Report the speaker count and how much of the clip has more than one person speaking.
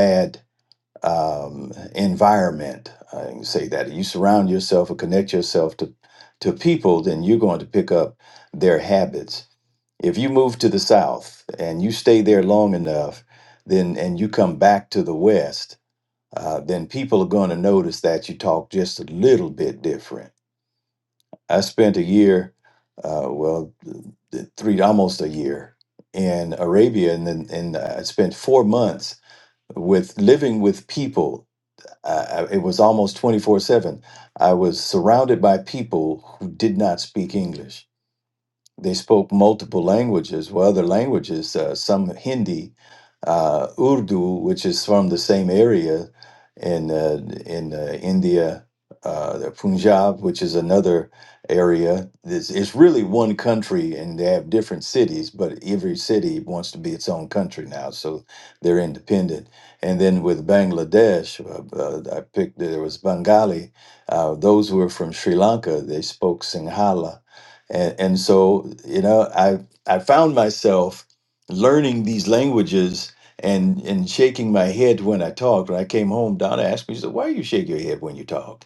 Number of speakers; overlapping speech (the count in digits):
1, no overlap